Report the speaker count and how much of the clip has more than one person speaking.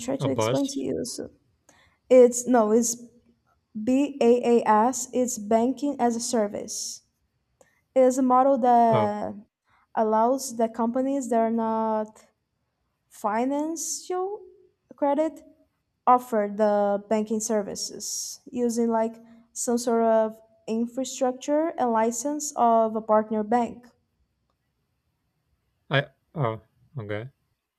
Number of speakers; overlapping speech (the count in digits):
2, about 3%